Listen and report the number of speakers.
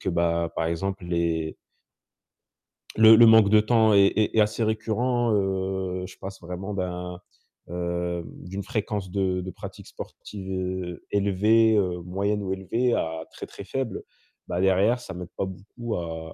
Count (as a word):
one